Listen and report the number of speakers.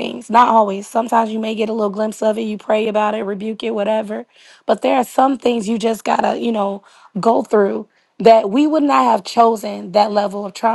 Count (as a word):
one